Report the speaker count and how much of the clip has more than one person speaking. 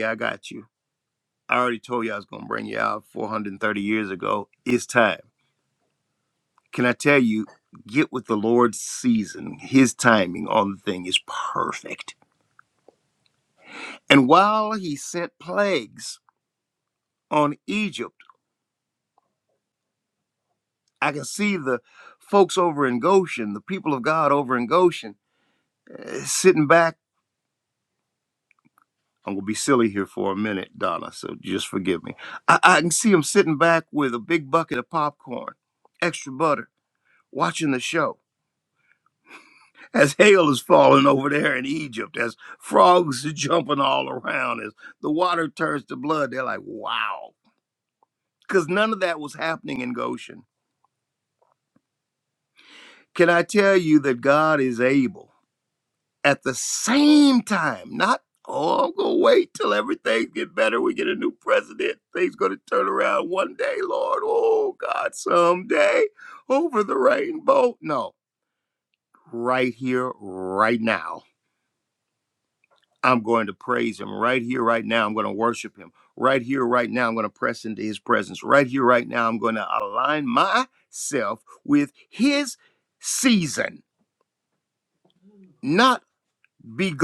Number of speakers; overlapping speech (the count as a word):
one, no overlap